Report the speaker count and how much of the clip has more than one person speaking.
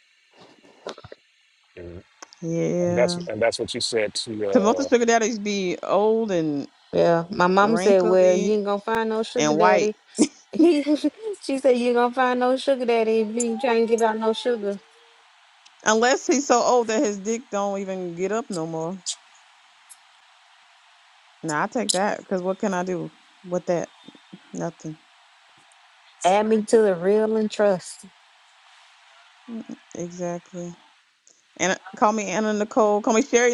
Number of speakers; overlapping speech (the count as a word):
three, about 7%